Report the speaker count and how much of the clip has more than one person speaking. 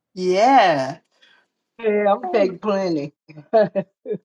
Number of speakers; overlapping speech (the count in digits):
2, about 7%